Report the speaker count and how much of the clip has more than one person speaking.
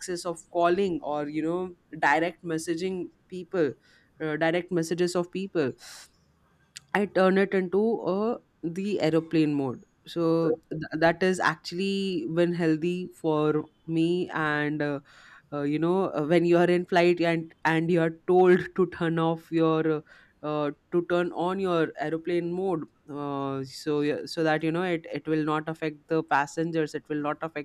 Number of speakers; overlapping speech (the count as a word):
one, no overlap